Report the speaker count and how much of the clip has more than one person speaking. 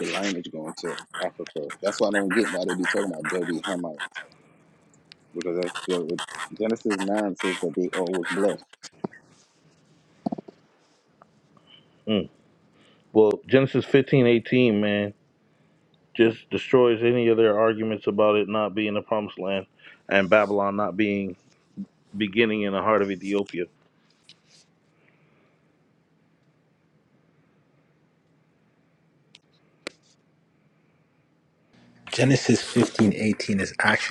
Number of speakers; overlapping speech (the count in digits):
3, no overlap